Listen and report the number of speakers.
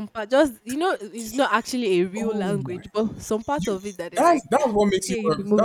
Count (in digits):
2